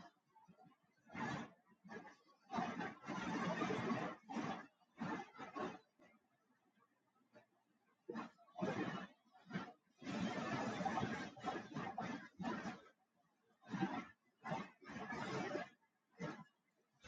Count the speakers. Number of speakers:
0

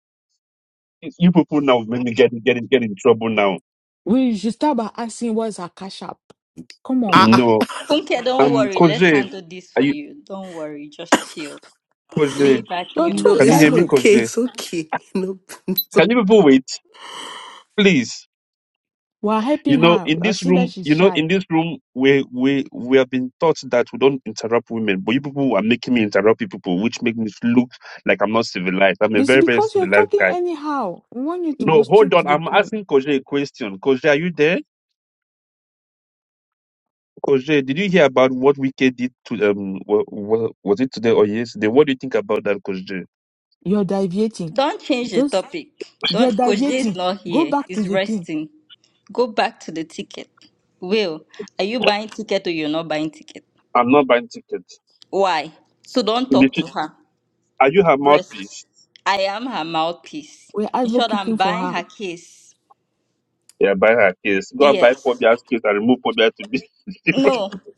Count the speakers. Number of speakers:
4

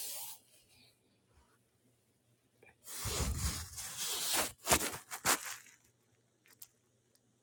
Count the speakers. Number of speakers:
0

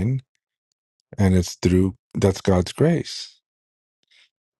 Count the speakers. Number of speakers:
1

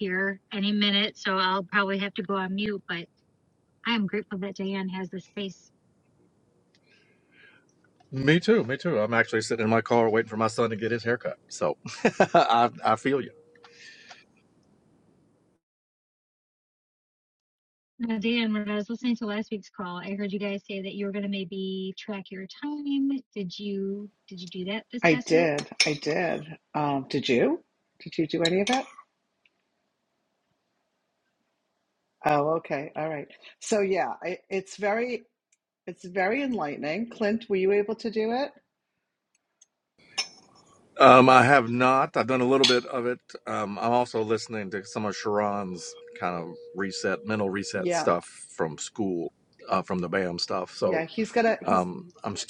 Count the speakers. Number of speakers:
3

